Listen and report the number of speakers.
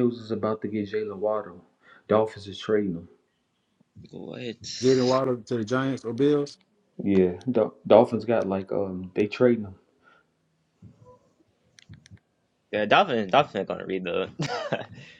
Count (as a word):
three